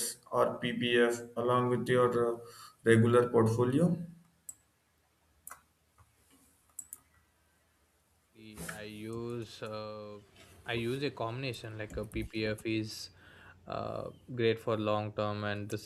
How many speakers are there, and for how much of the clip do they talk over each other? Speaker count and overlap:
two, no overlap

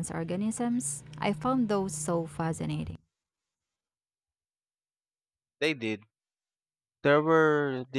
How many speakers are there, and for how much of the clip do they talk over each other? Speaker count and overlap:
two, no overlap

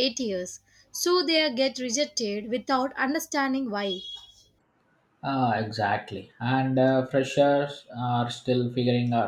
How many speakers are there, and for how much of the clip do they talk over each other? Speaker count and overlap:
two, no overlap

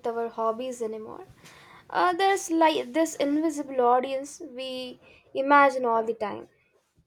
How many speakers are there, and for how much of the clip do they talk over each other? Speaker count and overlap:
one, no overlap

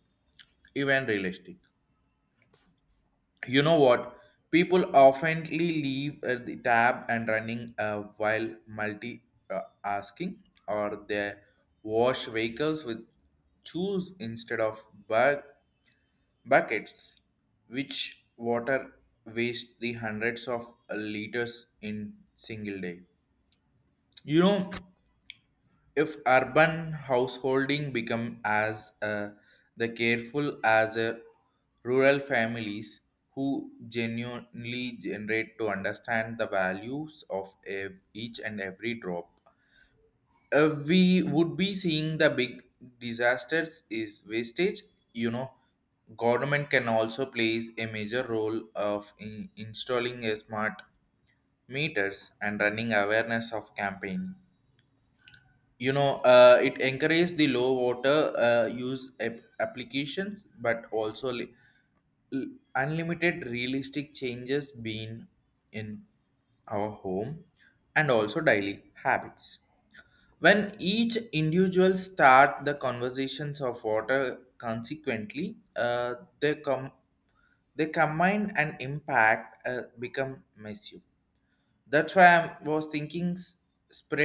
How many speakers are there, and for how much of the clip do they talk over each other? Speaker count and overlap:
one, no overlap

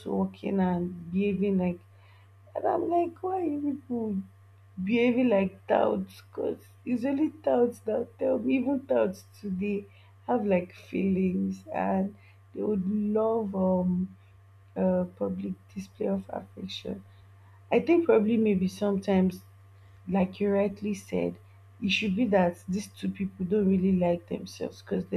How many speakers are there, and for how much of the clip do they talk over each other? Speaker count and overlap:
one, no overlap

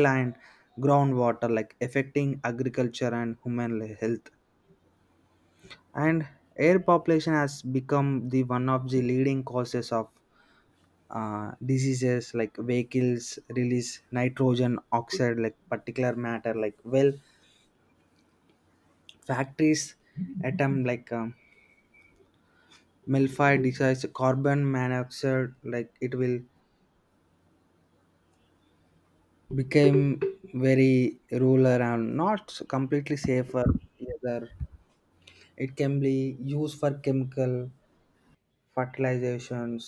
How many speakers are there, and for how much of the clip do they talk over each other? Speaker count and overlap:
one, no overlap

